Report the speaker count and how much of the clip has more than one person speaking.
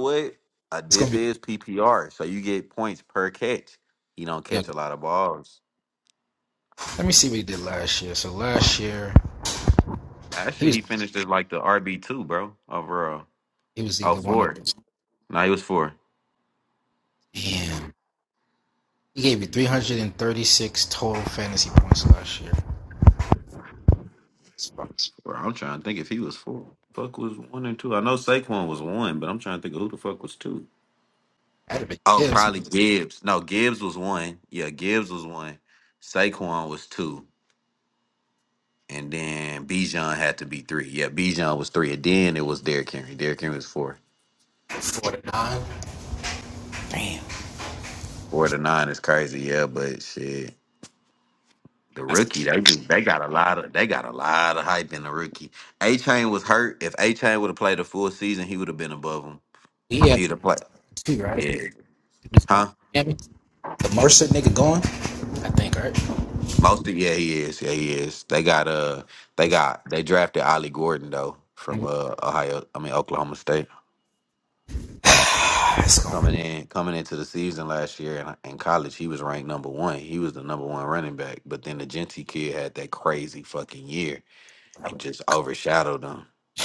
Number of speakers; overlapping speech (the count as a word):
two, about 2%